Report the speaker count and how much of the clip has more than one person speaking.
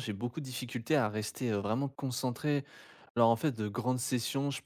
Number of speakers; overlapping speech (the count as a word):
one, no overlap